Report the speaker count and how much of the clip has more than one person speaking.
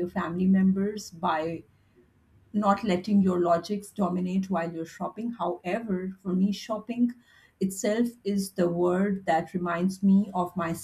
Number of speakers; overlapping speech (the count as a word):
one, no overlap